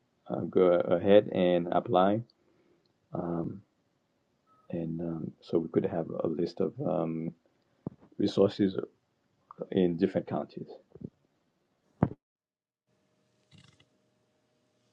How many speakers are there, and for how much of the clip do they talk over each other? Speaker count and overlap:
1, no overlap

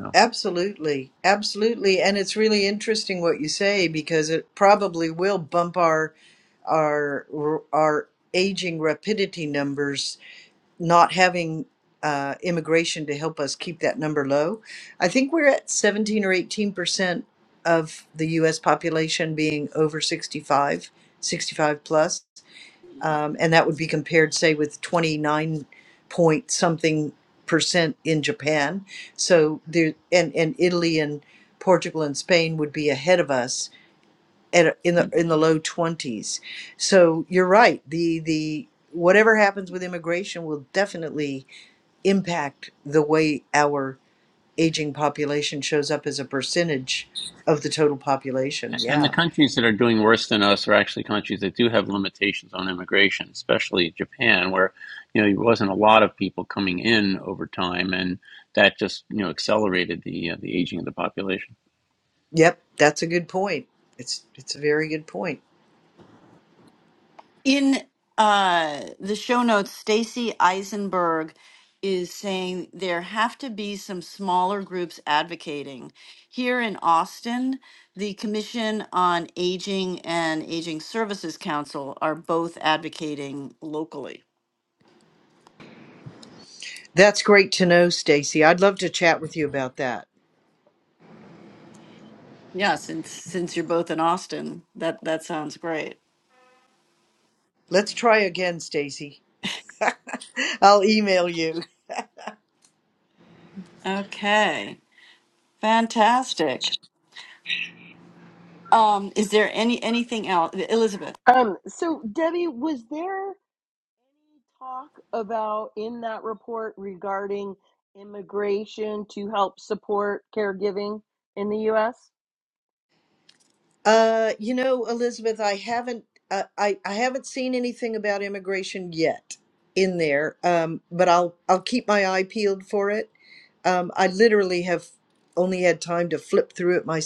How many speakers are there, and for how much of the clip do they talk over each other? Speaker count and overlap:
4, under 1%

